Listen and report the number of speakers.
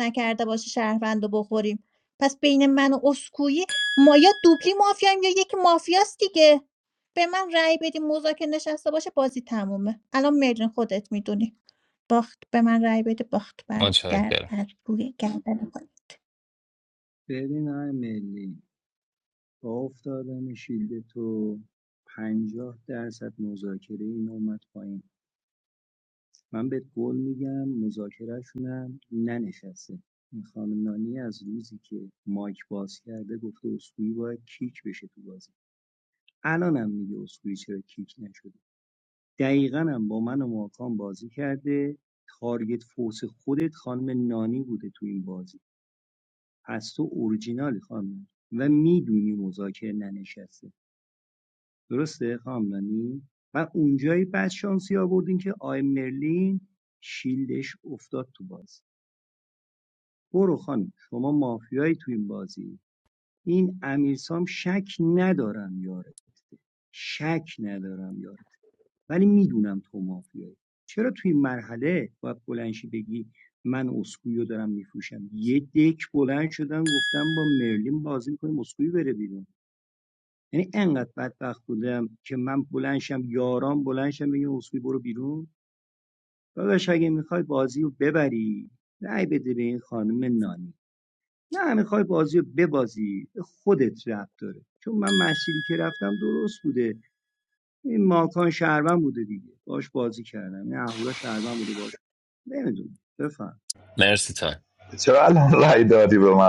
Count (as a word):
four